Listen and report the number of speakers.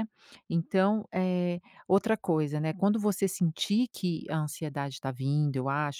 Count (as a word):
one